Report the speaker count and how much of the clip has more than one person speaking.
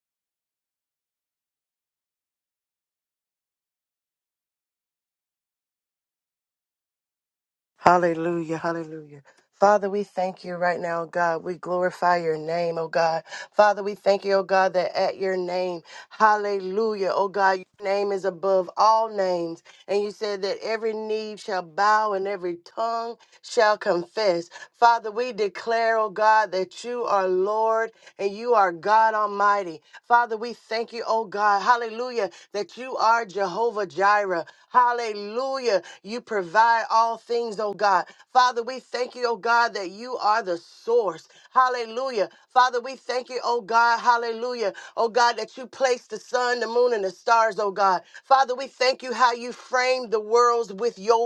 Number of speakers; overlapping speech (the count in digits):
1, no overlap